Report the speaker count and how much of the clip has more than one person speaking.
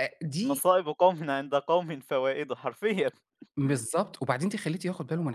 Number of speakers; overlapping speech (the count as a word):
two, about 3%